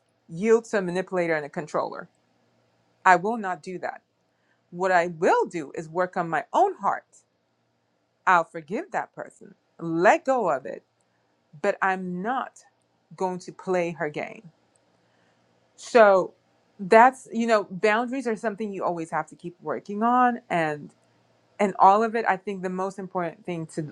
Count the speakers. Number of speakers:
one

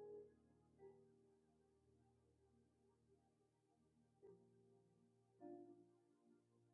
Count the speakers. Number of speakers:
zero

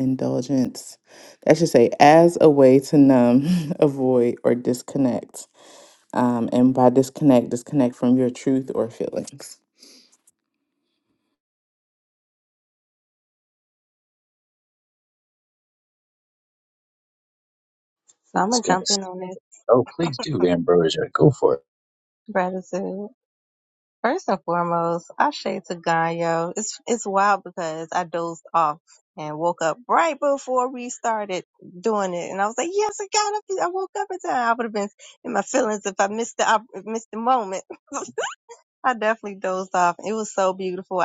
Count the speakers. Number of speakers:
three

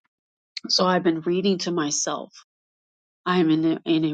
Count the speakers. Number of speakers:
one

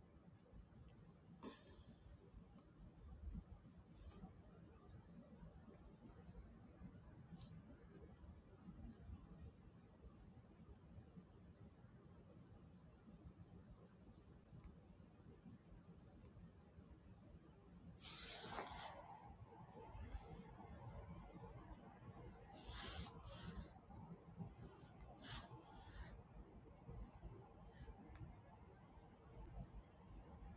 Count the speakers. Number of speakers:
zero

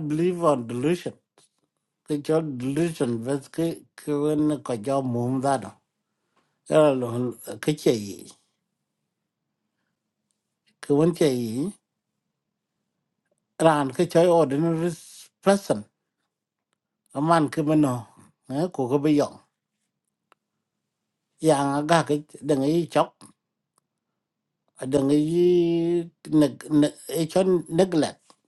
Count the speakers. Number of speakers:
one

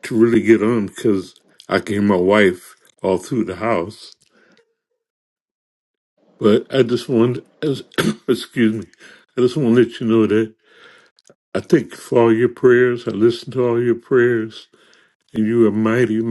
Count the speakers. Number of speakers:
one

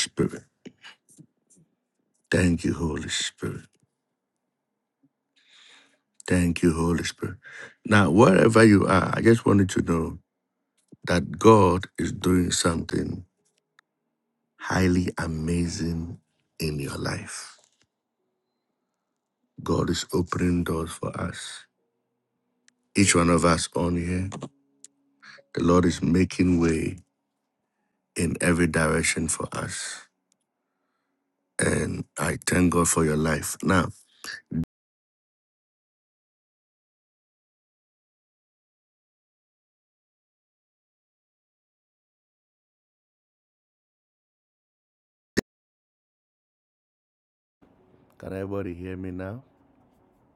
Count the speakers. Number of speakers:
one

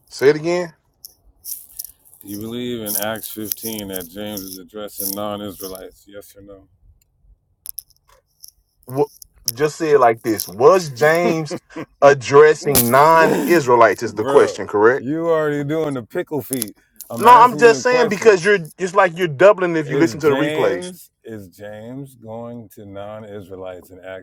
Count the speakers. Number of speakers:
two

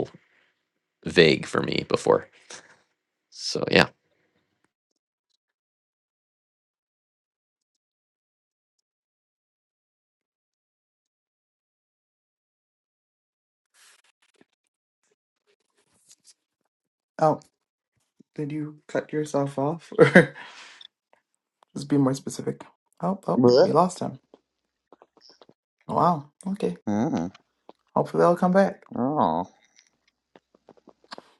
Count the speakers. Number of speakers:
three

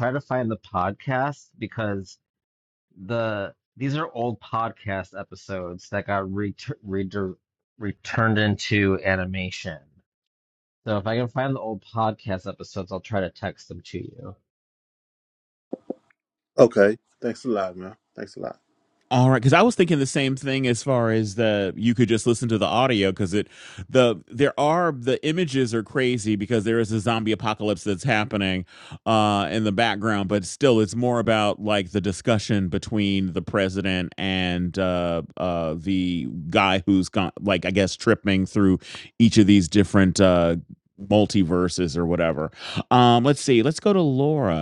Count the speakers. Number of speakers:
three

